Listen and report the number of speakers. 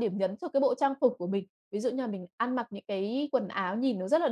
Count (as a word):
one